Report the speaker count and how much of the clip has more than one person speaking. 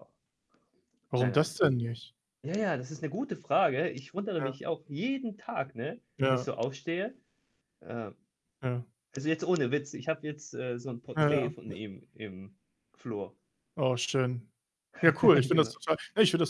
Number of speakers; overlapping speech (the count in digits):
2, about 8%